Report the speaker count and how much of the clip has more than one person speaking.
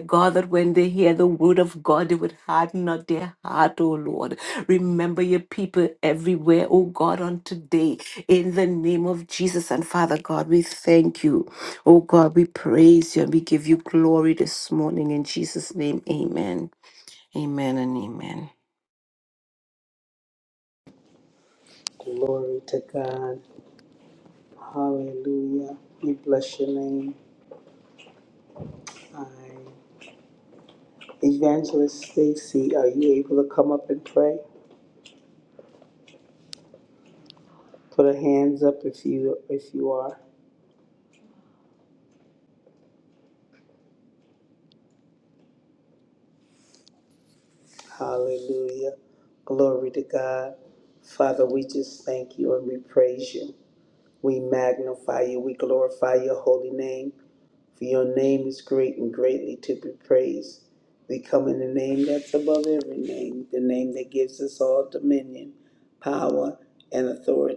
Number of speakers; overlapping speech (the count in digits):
2, no overlap